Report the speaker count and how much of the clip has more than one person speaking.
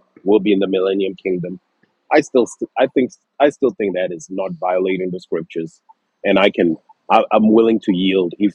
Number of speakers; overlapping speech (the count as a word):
one, no overlap